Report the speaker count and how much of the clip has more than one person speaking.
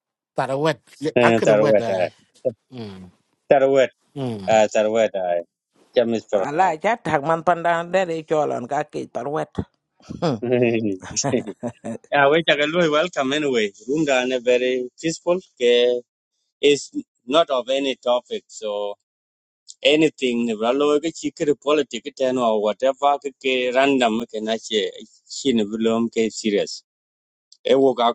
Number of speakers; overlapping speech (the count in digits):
3, about 5%